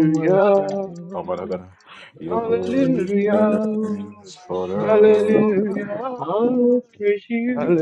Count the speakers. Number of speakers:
3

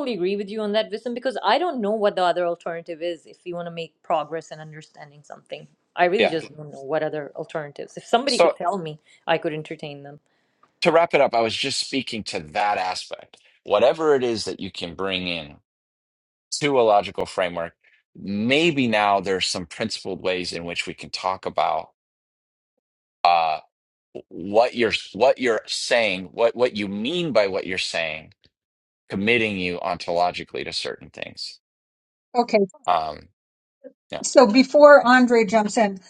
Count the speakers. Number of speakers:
3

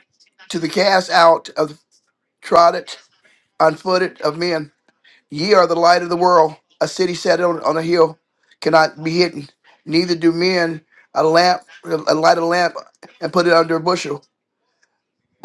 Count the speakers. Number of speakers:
1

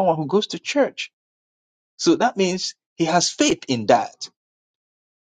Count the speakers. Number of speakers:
1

